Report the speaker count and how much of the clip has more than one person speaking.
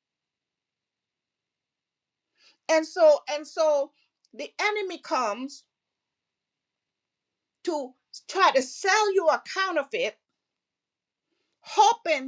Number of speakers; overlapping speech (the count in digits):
1, no overlap